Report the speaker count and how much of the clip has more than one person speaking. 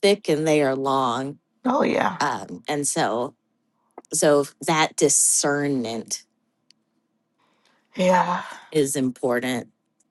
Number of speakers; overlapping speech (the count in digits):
2, under 1%